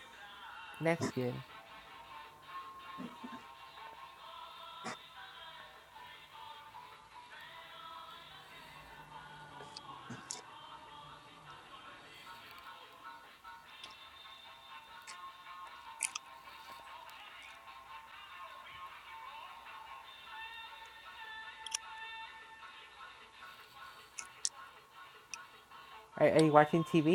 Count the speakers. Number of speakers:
1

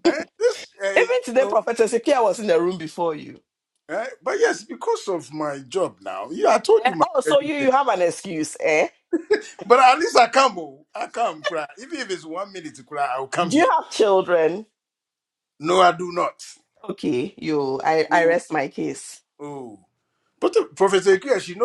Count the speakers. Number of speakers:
2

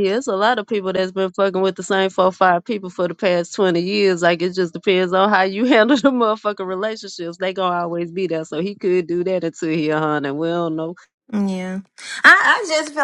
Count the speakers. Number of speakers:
2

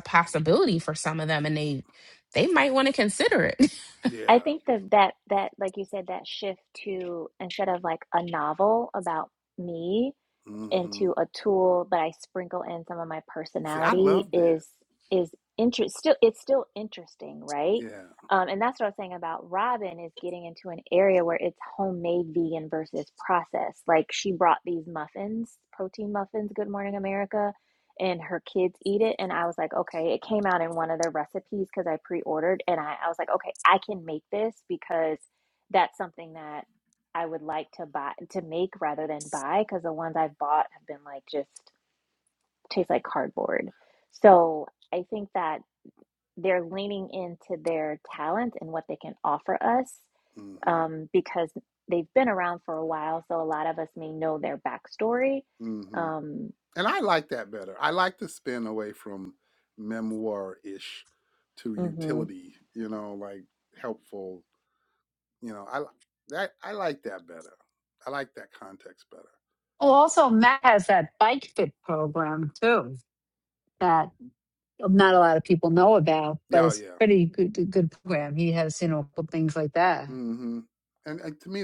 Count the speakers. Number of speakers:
4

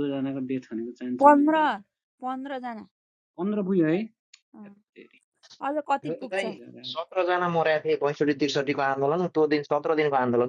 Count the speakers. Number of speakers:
3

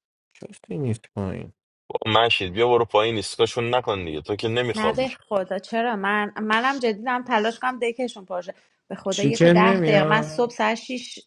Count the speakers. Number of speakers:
3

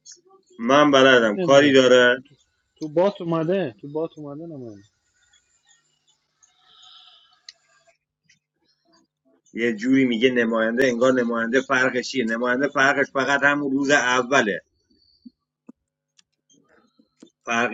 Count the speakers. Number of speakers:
2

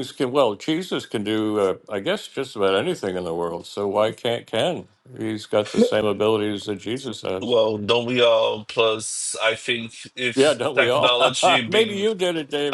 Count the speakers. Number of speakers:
2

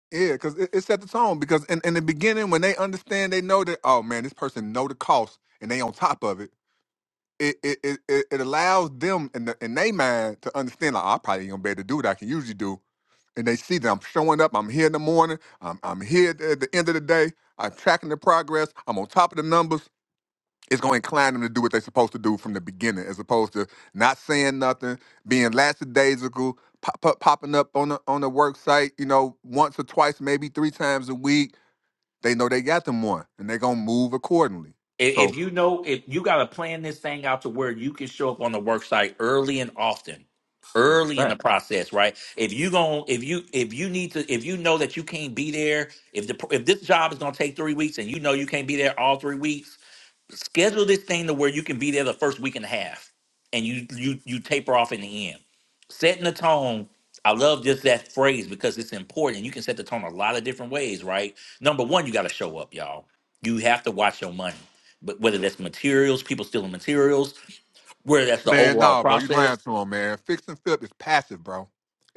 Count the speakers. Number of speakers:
2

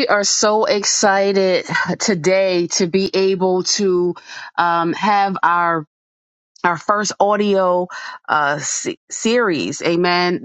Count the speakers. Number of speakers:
1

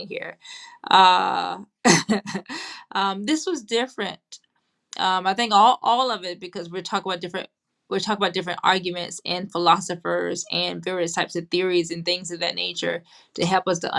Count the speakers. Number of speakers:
1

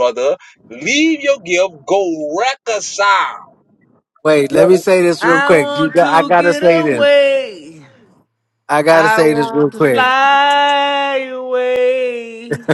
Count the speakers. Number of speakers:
3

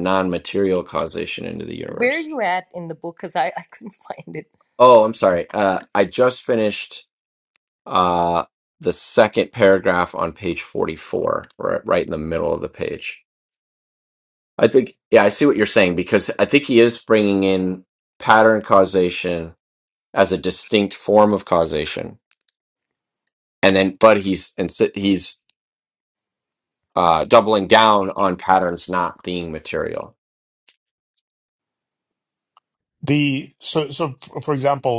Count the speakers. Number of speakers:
3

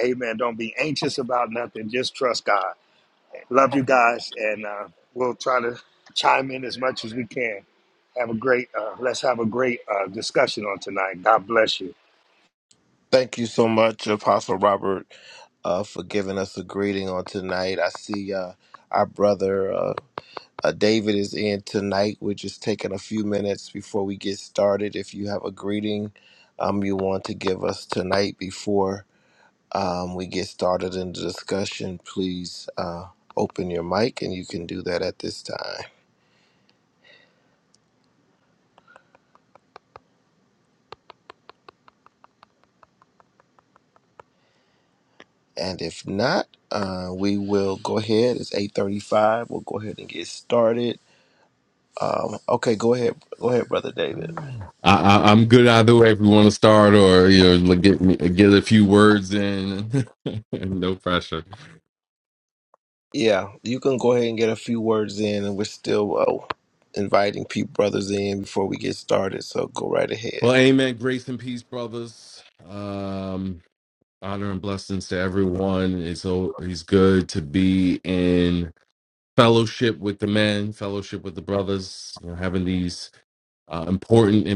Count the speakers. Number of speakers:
3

